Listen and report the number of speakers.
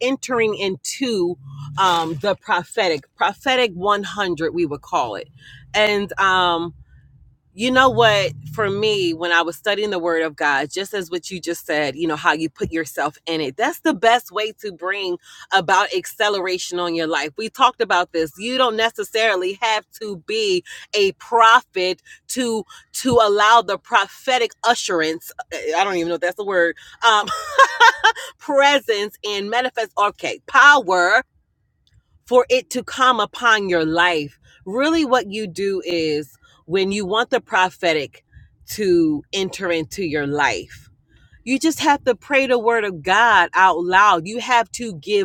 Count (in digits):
1